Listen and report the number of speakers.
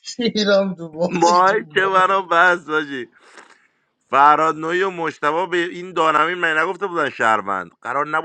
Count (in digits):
2